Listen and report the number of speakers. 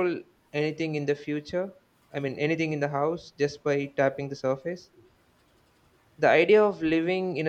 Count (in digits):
1